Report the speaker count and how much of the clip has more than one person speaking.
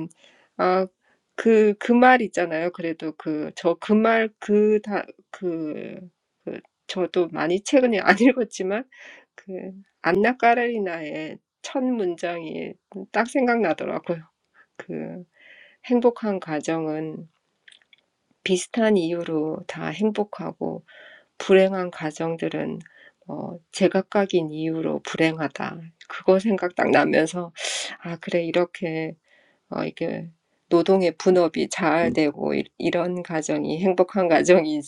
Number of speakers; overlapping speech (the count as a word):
one, no overlap